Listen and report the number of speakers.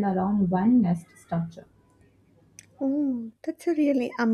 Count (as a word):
two